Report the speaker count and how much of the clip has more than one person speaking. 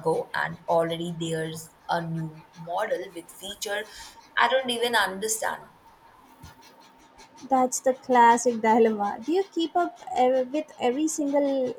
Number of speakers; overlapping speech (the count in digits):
2, no overlap